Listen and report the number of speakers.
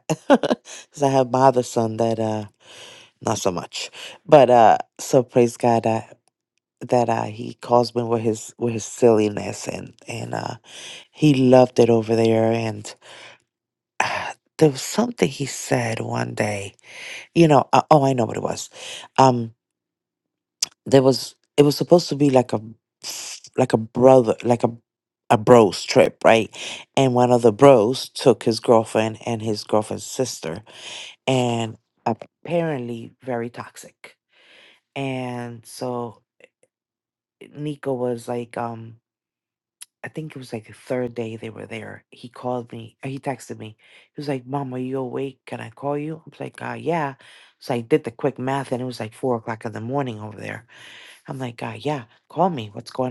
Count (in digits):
1